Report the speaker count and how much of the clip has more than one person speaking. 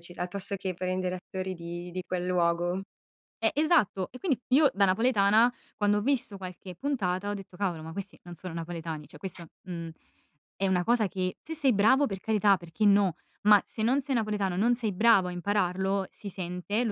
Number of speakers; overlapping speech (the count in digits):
2, no overlap